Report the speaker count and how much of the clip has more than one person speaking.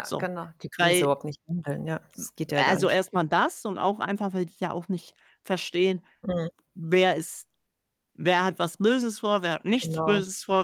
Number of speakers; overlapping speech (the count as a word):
two, about 12%